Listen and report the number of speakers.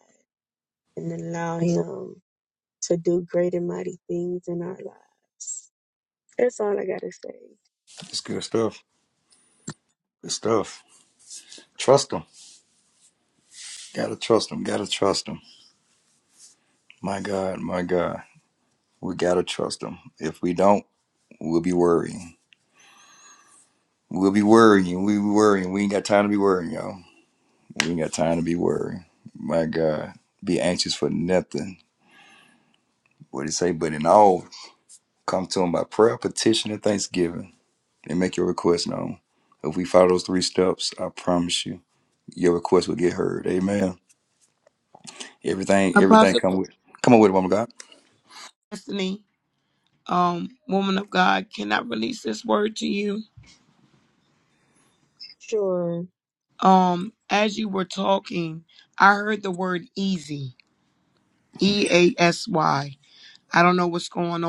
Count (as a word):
three